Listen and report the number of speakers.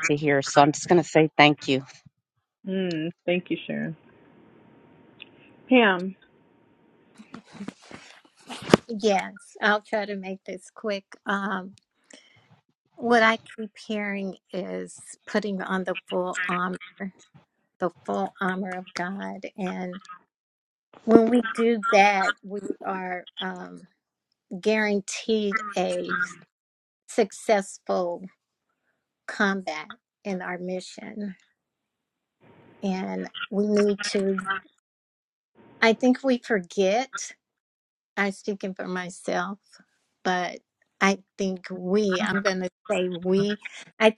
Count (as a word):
three